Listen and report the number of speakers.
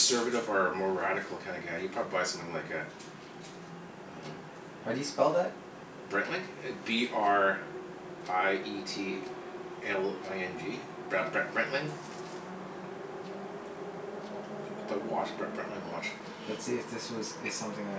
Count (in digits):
2